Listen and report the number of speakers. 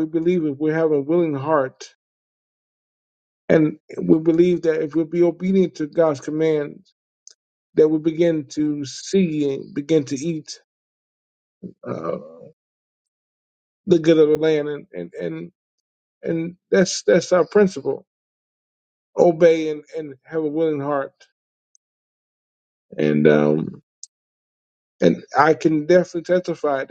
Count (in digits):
1